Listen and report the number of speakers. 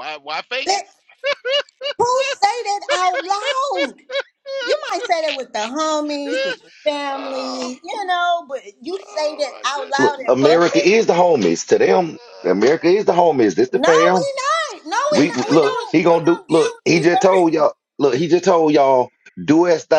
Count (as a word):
three